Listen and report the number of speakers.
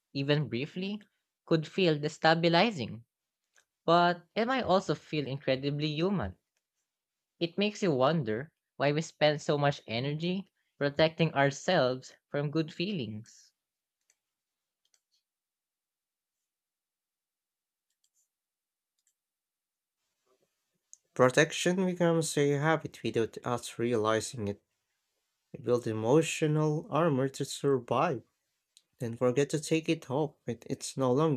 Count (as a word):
two